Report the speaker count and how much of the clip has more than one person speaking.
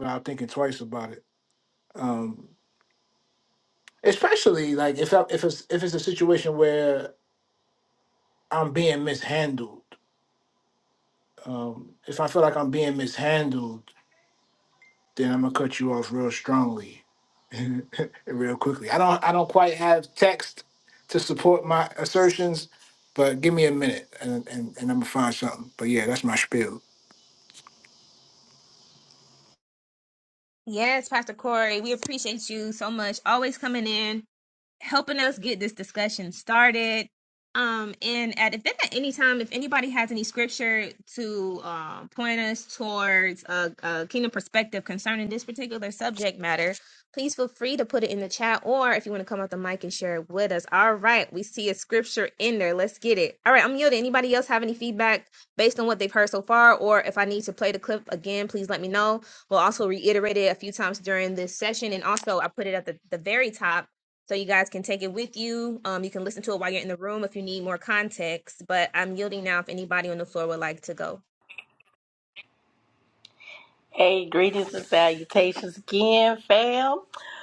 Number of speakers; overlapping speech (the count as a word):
three, no overlap